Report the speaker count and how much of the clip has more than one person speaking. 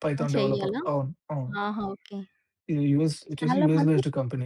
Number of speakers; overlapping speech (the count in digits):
2, about 30%